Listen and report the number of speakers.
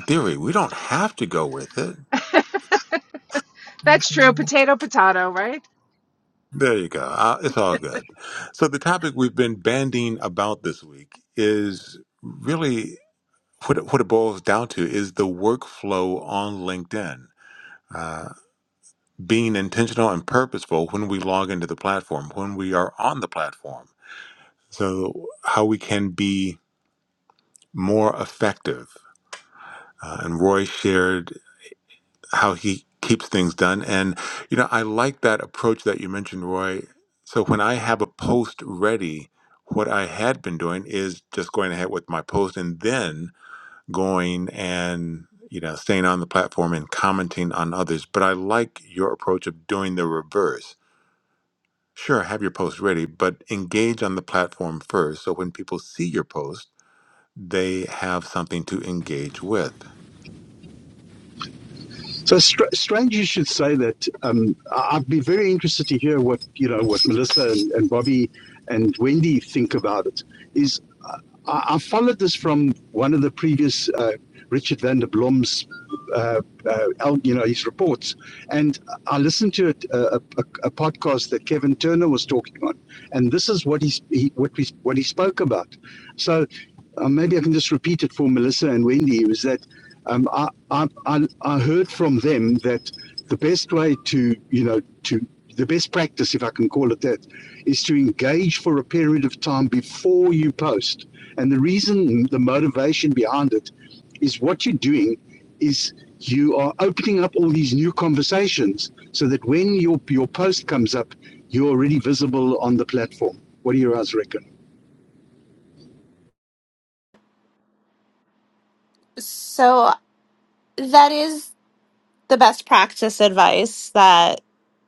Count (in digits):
4